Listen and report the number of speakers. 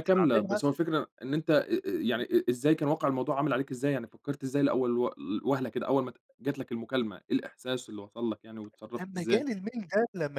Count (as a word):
two